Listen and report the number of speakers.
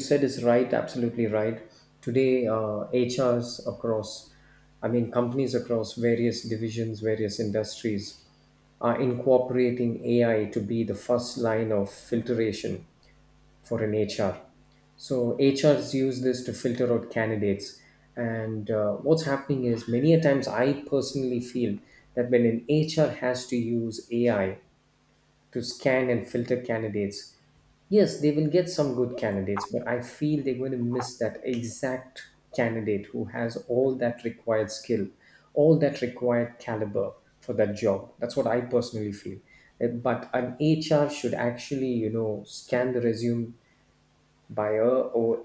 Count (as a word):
one